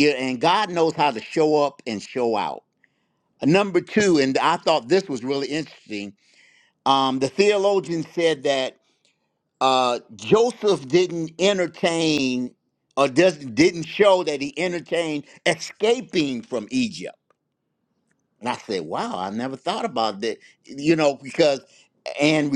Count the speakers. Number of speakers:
one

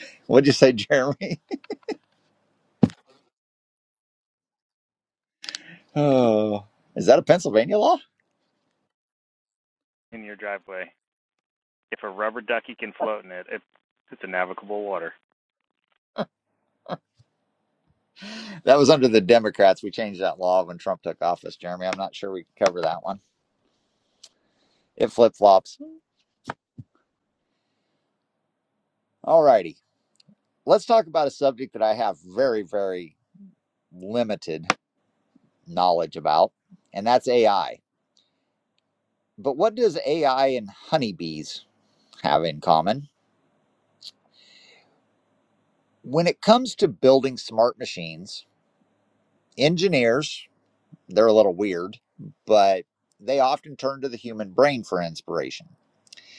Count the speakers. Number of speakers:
two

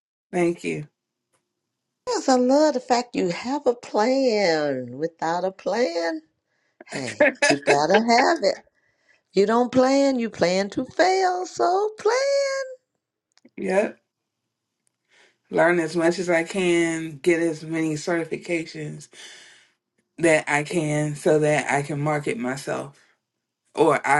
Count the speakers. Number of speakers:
two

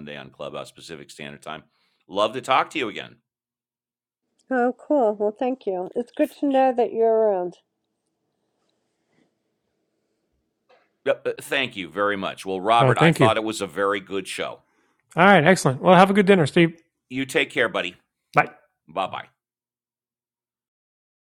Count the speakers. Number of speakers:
three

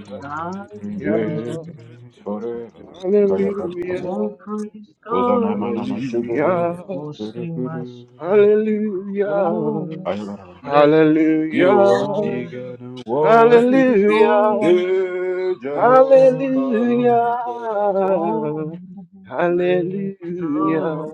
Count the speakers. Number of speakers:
three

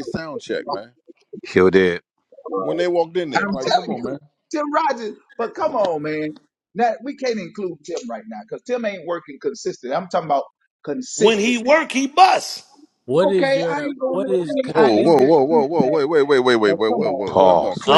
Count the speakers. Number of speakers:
five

